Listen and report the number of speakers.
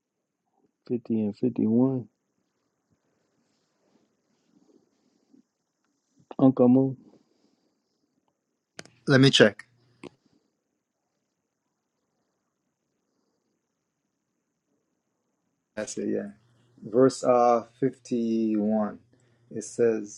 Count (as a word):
two